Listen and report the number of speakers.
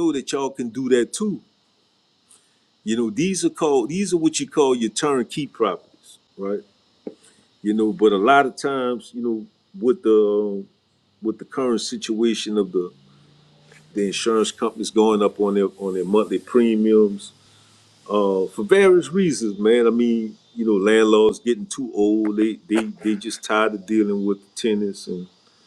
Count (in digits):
1